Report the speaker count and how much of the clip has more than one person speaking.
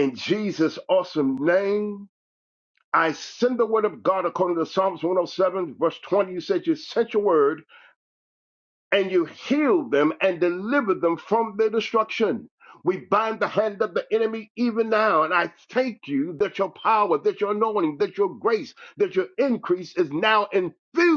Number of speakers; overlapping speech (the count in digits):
1, no overlap